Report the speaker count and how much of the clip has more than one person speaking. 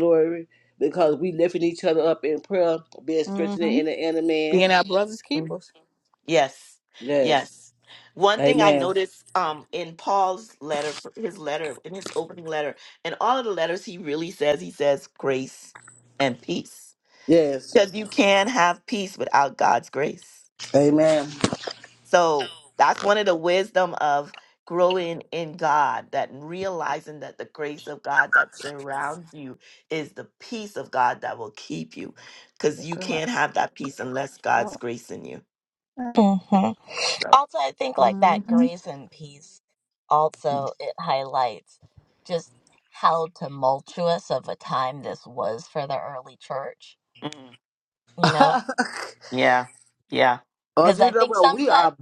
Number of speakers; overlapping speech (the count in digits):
4, about 8%